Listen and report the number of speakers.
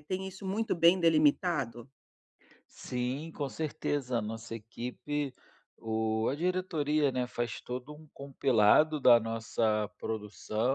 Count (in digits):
2